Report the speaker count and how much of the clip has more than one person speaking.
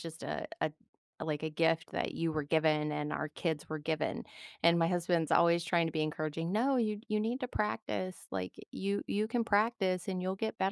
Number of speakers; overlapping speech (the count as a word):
one, no overlap